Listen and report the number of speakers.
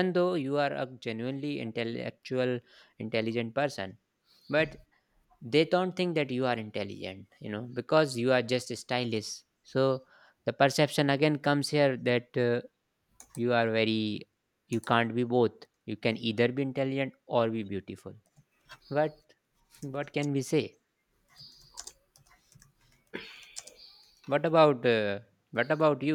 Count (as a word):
one